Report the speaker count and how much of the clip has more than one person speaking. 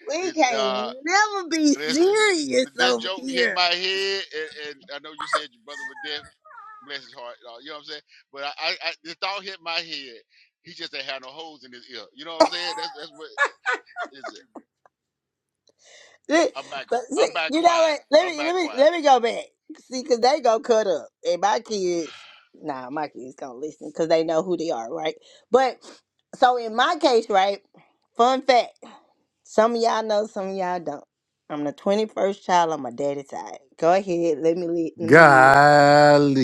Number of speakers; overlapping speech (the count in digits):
3, about 13%